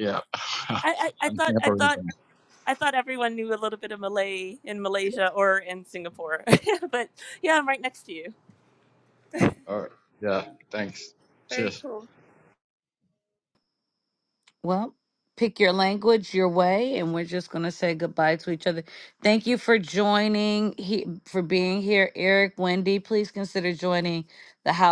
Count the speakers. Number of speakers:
three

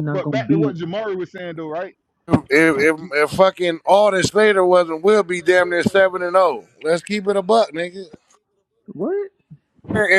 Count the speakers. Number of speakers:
three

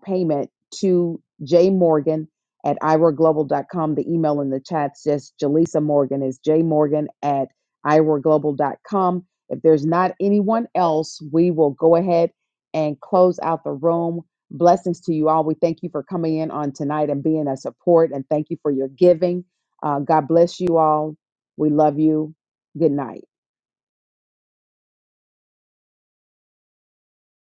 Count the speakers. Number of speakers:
one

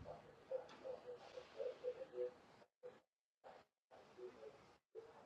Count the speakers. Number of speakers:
zero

